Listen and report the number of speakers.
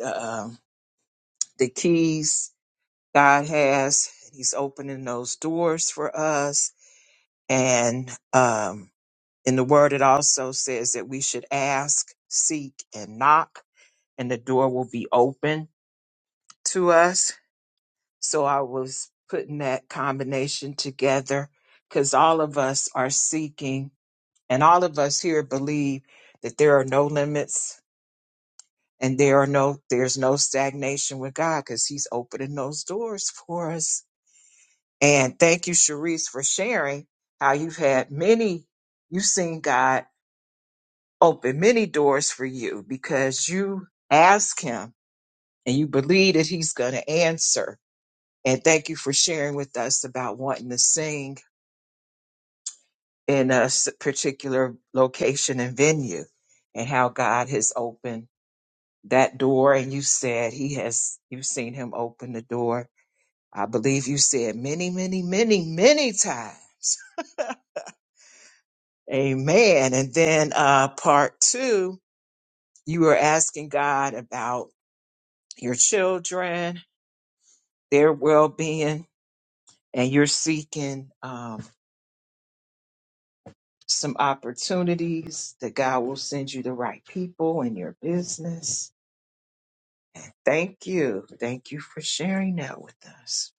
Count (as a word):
one